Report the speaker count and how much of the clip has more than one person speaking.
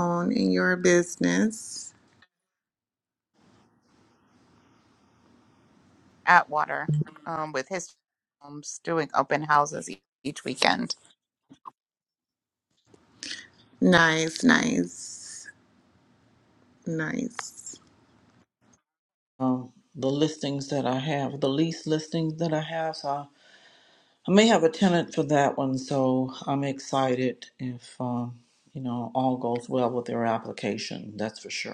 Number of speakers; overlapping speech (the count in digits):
3, no overlap